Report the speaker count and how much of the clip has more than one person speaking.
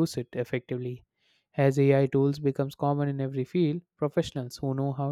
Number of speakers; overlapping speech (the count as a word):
one, no overlap